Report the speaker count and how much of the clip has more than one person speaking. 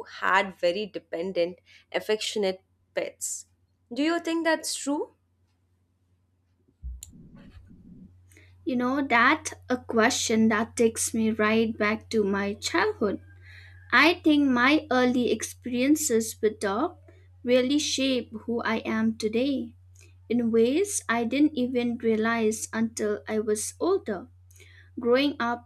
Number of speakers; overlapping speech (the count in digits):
2, no overlap